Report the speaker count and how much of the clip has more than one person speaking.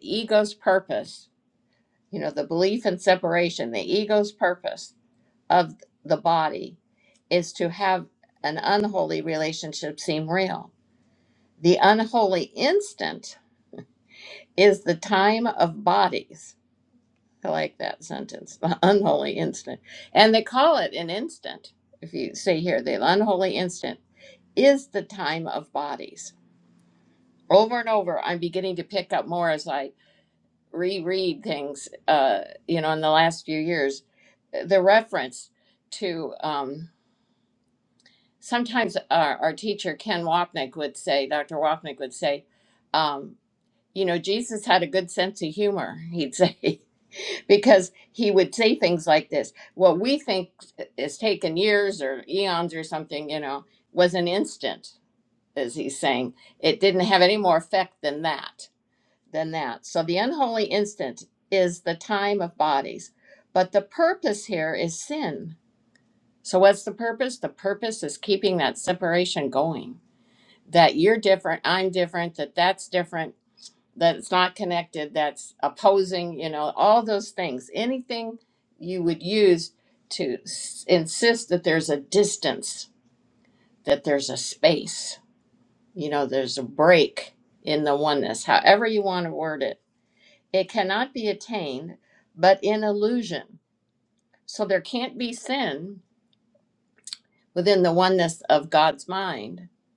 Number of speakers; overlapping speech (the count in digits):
1, no overlap